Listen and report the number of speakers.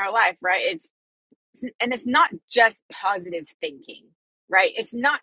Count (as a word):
one